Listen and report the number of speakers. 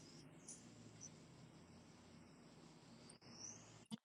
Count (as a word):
zero